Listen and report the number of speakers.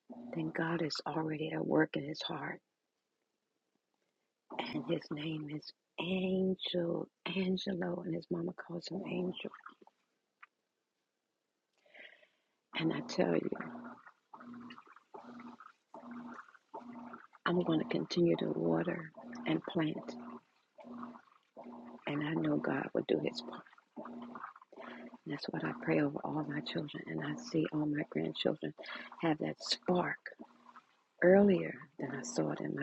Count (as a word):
one